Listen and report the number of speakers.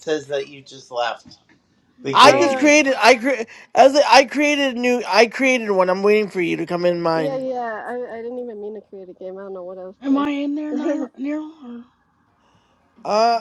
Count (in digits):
4